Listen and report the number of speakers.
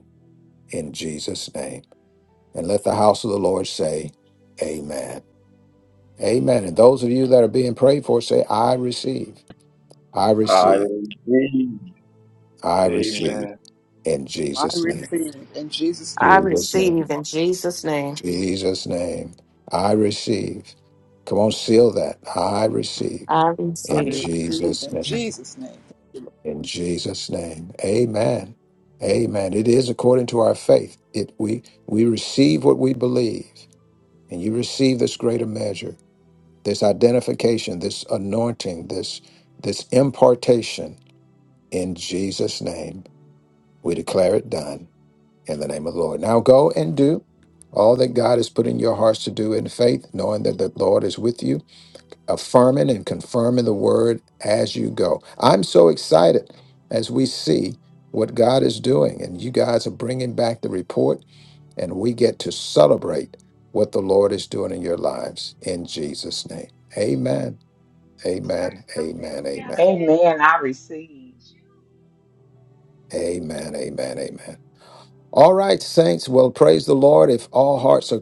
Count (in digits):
5